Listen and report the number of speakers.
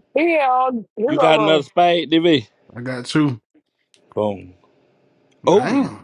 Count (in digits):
3